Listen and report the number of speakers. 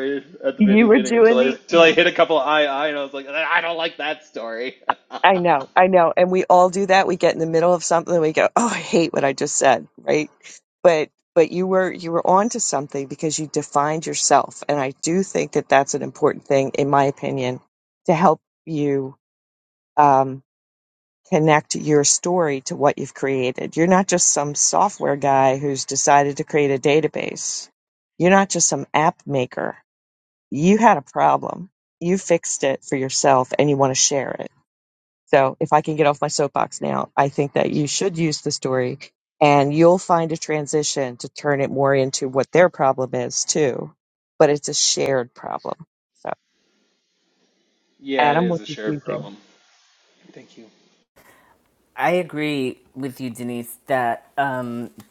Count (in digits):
3